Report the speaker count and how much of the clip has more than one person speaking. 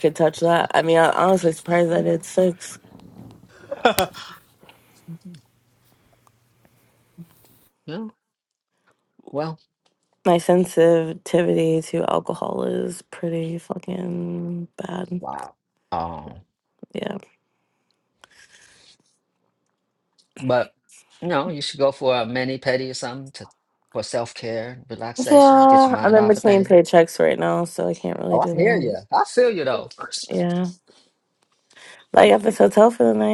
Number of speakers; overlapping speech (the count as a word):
two, about 6%